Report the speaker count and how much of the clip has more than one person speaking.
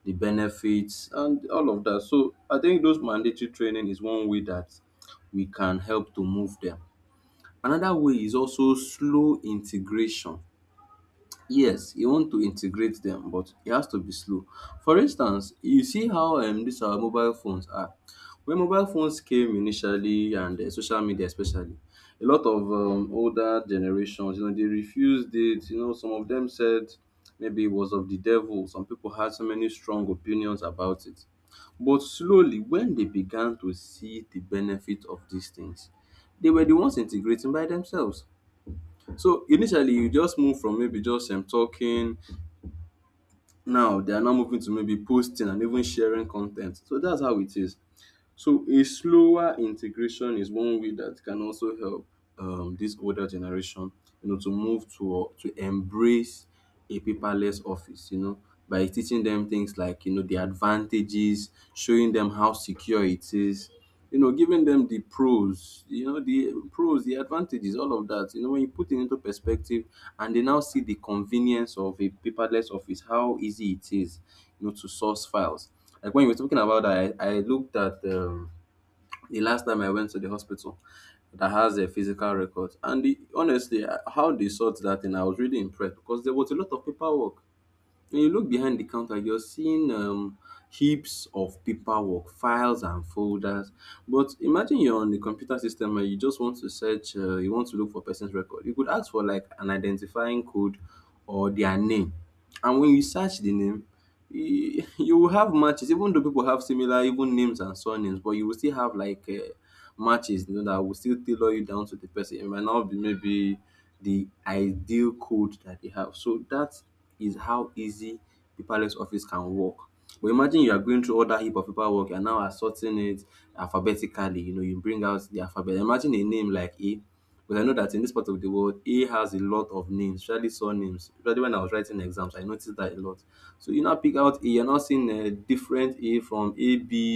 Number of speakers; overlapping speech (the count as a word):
one, no overlap